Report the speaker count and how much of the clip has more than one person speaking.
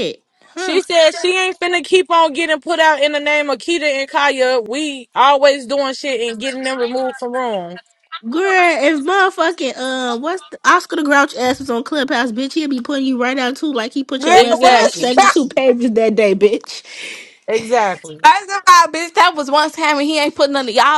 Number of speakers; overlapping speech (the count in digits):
3, about 5%